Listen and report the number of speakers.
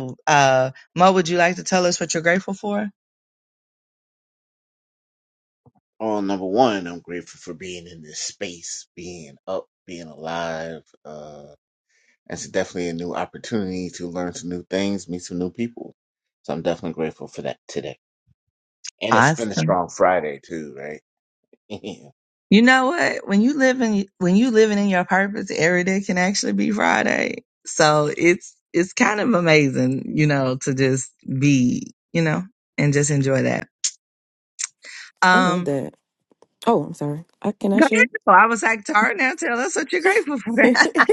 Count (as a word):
three